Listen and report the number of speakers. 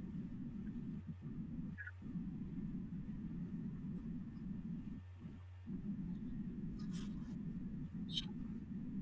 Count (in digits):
0